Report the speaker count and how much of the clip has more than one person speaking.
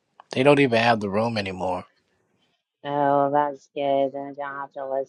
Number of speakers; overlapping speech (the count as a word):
two, no overlap